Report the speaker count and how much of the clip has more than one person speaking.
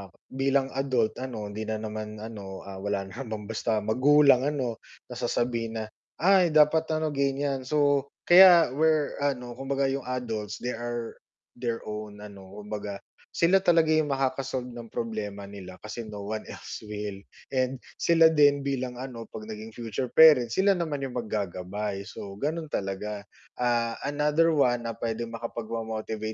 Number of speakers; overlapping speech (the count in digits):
1, no overlap